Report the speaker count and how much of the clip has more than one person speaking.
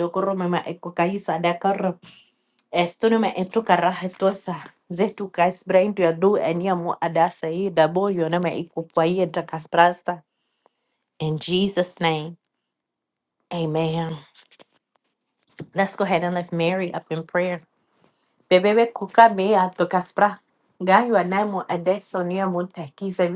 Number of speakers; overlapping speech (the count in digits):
1, no overlap